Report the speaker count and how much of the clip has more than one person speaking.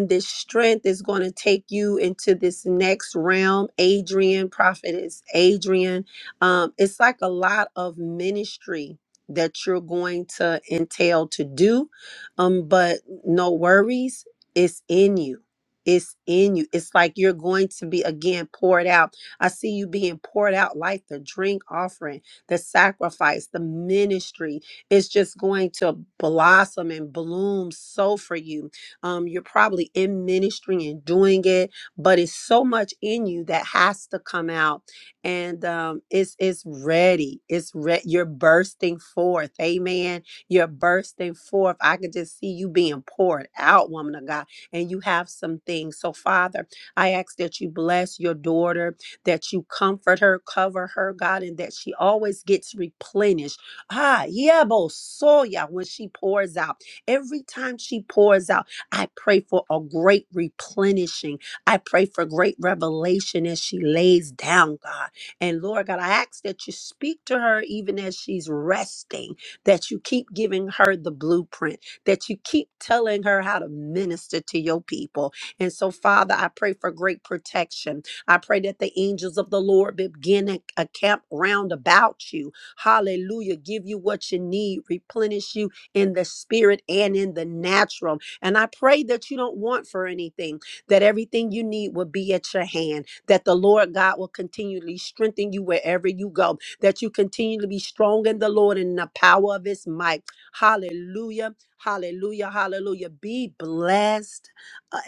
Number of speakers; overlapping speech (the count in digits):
1, no overlap